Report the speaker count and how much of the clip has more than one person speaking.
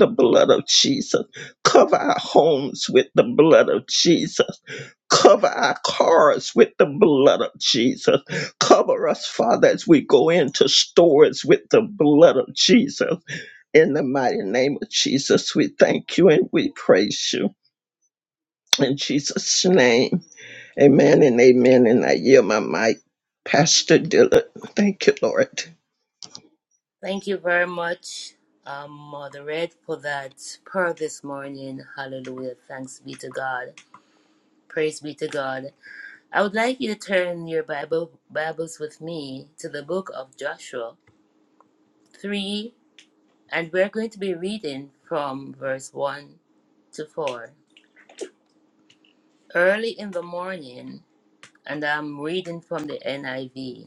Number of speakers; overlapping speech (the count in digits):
2, no overlap